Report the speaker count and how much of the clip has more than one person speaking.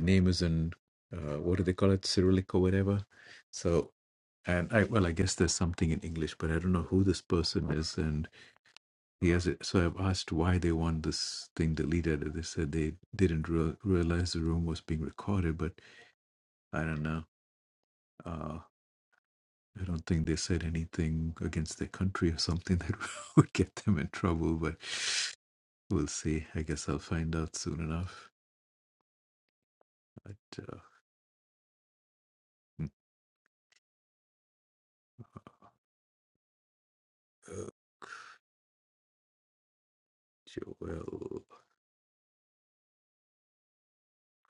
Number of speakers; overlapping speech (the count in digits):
1, no overlap